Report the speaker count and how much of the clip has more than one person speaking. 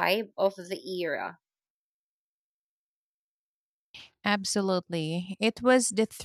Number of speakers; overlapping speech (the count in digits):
2, no overlap